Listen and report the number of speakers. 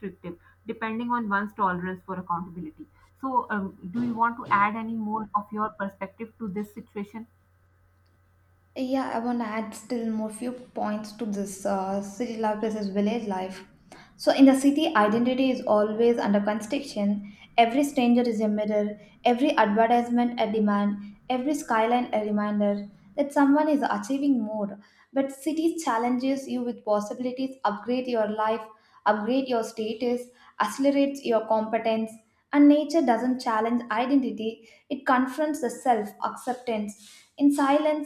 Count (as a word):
two